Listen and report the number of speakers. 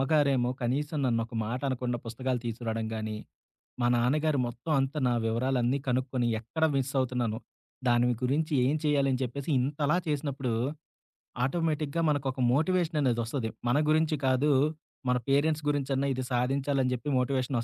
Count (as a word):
one